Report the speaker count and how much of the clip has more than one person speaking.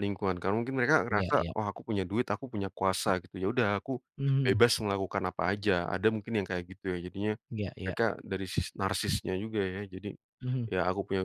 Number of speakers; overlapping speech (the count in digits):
2, about 6%